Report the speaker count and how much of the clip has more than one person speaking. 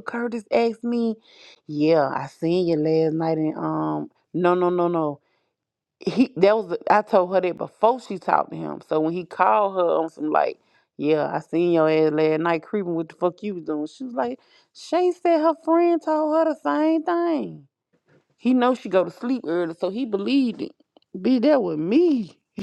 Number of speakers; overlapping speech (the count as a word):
one, no overlap